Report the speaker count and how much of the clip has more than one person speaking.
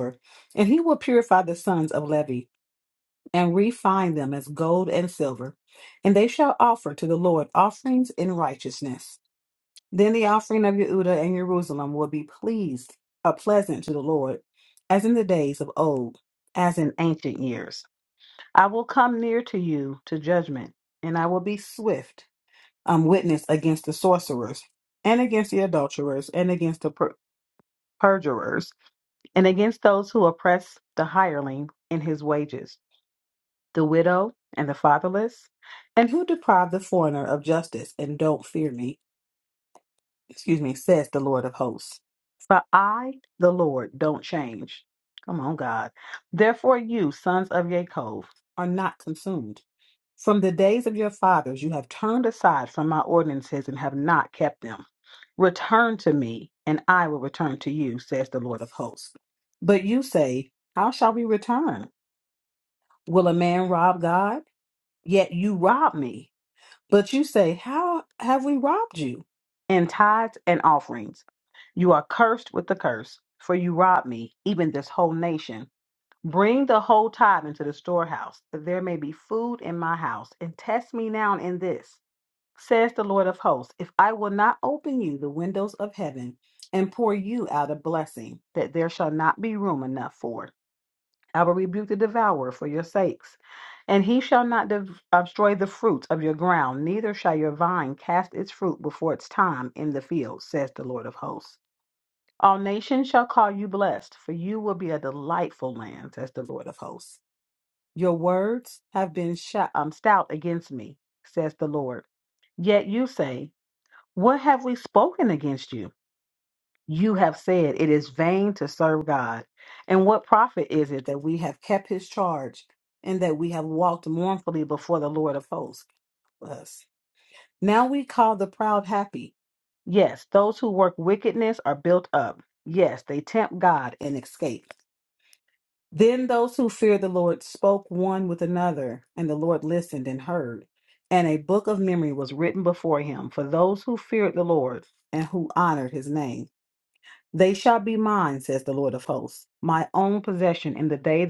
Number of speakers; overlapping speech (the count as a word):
one, no overlap